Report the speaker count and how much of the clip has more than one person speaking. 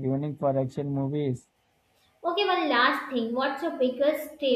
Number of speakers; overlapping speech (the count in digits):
2, no overlap